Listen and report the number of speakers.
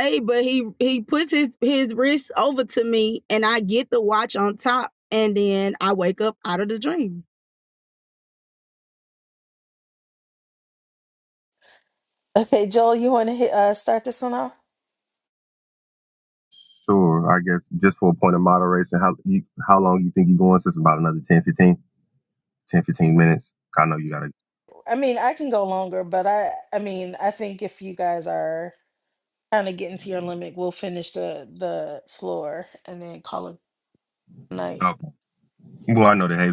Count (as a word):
three